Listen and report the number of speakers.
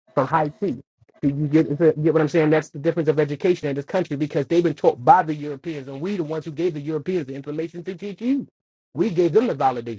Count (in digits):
1